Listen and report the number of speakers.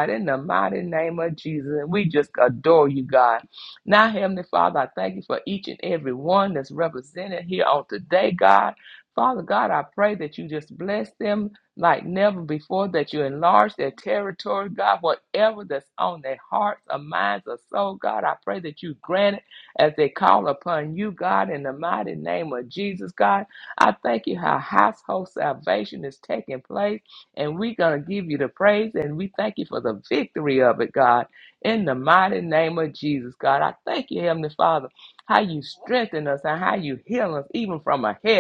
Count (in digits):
1